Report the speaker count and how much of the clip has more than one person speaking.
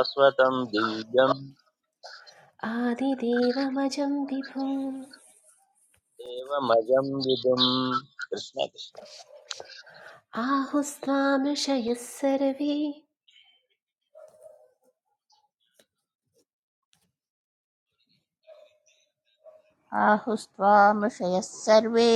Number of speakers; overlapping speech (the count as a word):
three, no overlap